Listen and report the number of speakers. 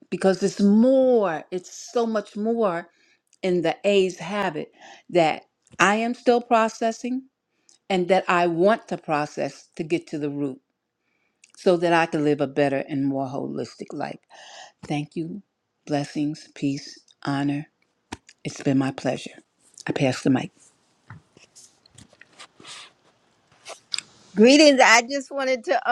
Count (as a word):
two